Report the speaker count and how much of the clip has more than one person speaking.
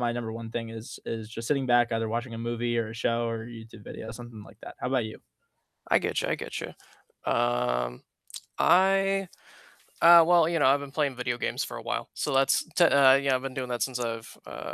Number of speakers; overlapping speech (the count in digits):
2, no overlap